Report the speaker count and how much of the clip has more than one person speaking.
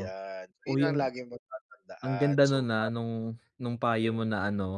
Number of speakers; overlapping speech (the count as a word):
two, about 33%